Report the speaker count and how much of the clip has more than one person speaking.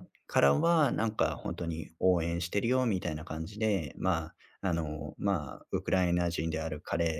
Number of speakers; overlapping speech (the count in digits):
1, no overlap